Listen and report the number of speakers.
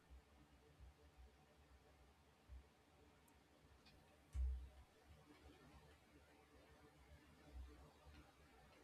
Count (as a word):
zero